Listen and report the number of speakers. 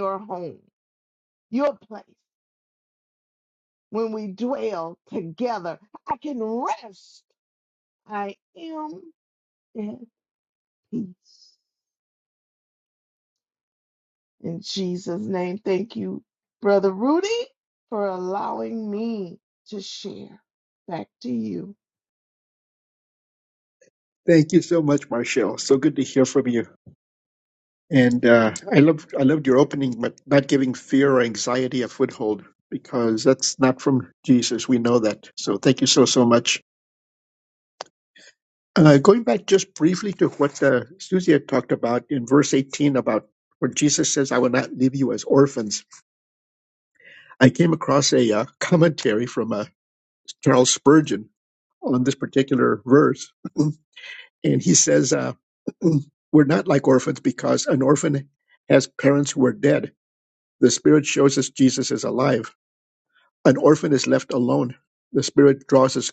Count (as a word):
two